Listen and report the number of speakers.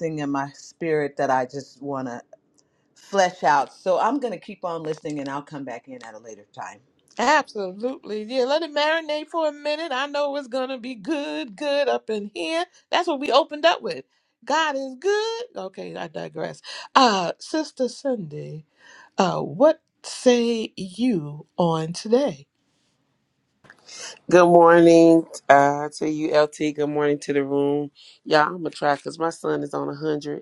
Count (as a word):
three